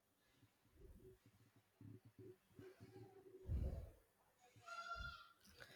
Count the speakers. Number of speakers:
0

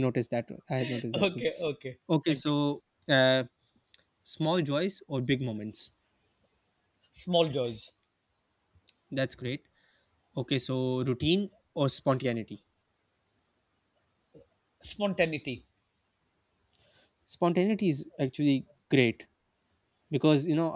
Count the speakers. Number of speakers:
2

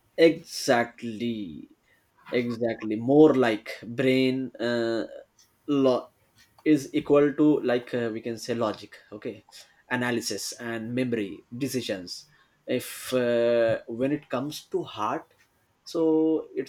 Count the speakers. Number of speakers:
1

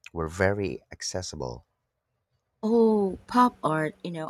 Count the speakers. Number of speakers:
2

